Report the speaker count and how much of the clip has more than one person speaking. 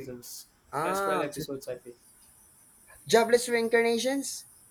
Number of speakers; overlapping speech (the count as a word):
two, about 13%